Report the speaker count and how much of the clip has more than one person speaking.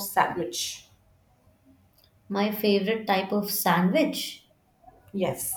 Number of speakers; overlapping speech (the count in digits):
2, no overlap